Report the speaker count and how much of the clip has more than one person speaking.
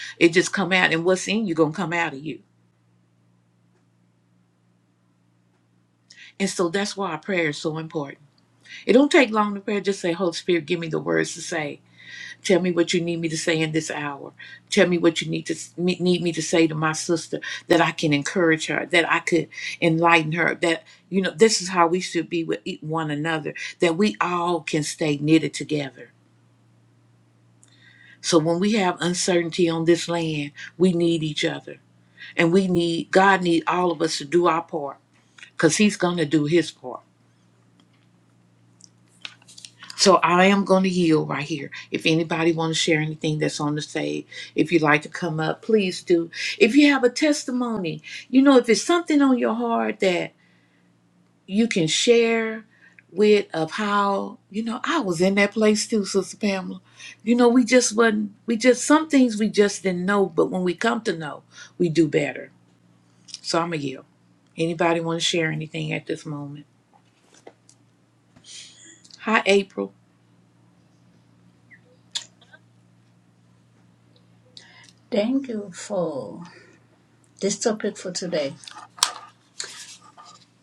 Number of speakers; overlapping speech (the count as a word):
two, no overlap